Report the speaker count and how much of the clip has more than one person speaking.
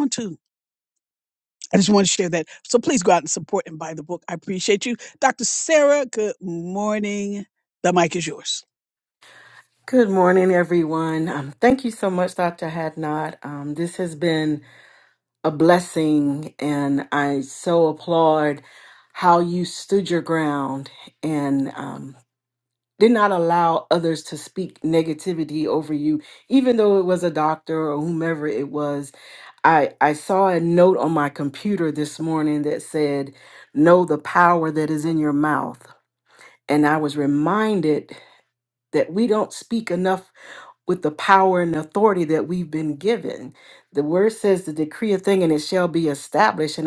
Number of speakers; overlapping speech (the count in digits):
2, no overlap